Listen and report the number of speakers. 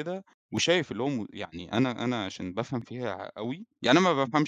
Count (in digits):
1